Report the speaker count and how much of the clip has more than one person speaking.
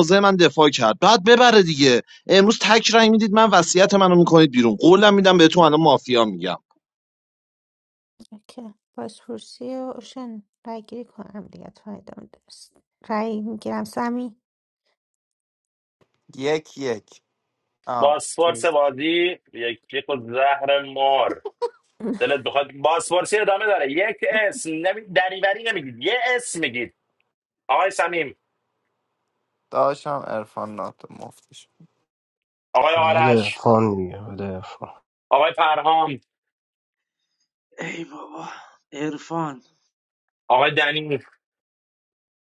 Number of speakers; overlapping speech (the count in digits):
6, about 1%